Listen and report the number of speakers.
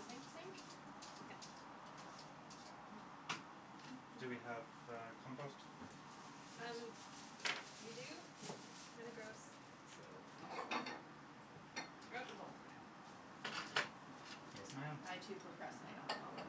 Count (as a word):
three